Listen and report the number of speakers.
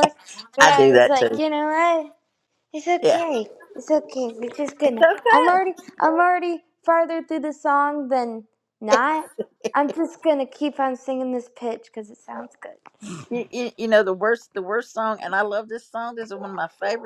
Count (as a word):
two